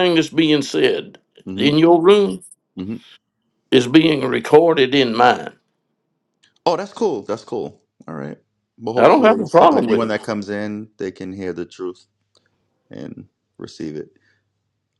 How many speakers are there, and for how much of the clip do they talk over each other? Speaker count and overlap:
2, about 8%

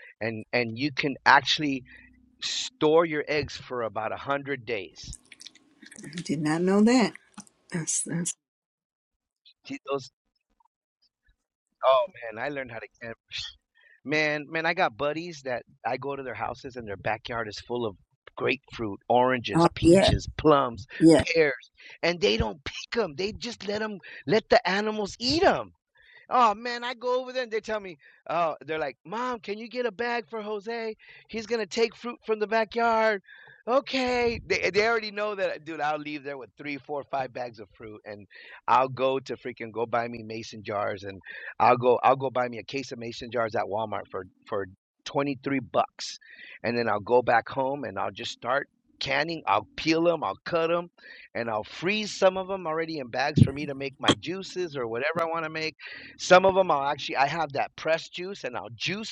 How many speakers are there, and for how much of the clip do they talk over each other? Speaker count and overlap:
2, about 1%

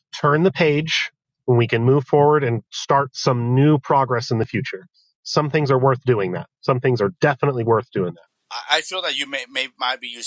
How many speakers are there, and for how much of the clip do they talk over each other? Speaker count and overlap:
2, no overlap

